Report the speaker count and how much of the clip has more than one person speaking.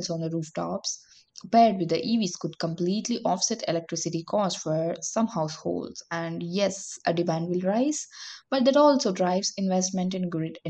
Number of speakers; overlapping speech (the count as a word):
one, no overlap